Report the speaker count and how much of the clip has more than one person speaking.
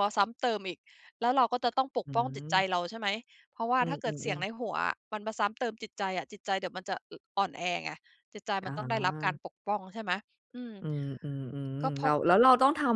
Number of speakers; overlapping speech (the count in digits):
2, about 8%